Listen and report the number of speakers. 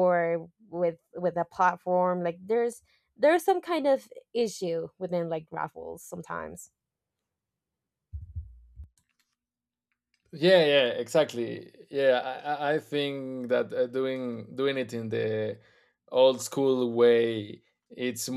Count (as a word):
two